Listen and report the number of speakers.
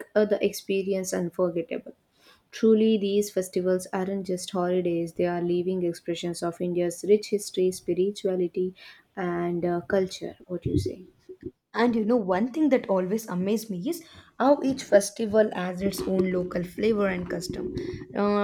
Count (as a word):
two